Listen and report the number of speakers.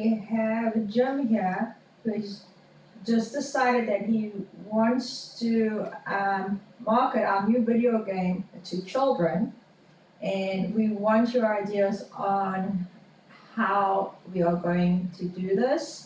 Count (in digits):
1